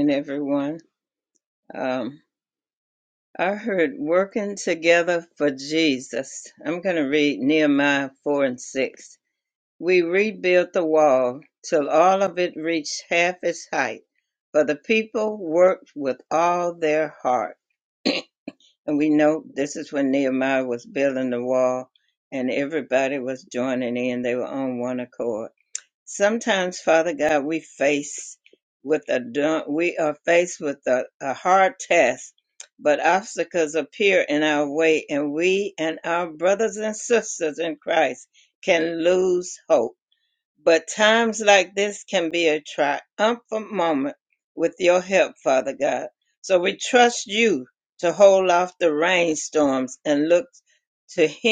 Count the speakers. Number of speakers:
one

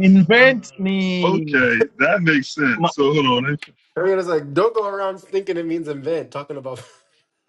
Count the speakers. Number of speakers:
three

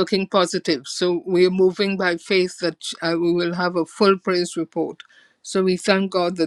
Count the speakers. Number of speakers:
one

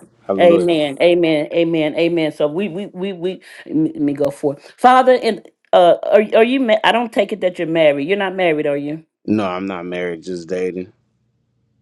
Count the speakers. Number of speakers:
two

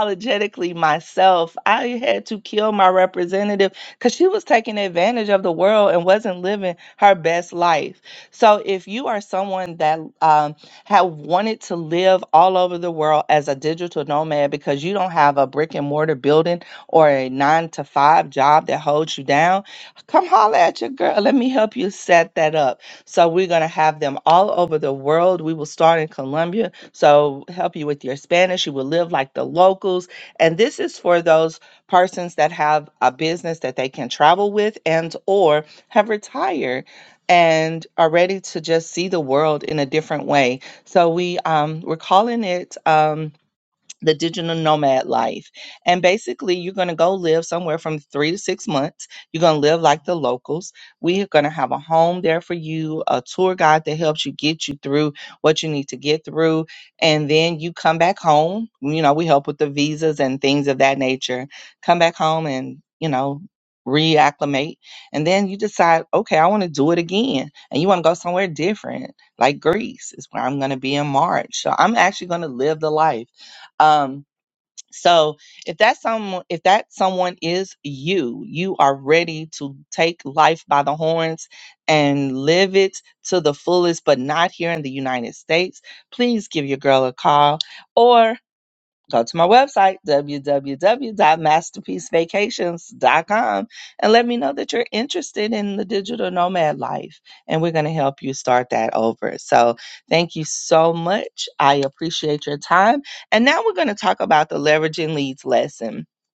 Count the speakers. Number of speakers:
one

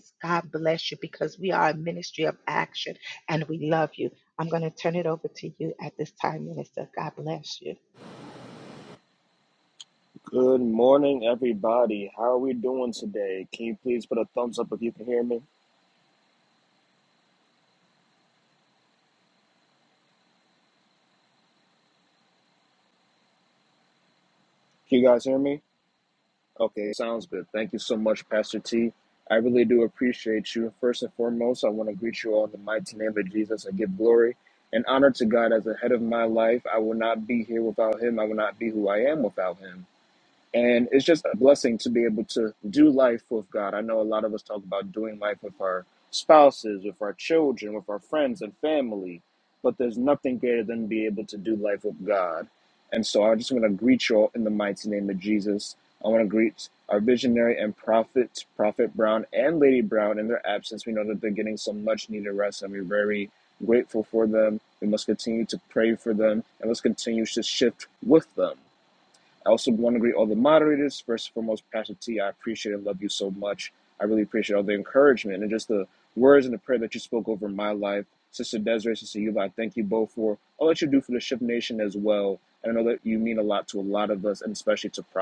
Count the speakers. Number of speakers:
two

